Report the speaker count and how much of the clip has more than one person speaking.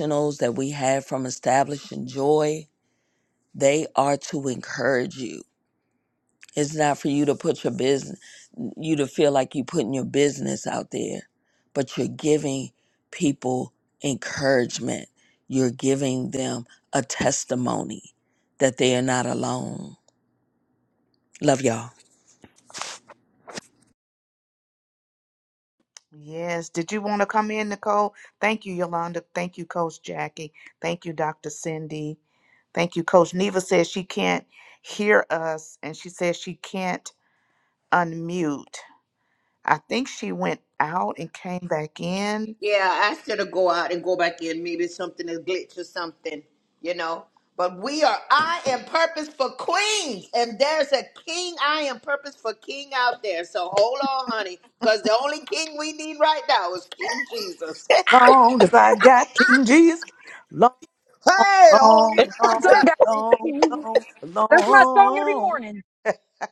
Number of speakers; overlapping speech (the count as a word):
four, about 3%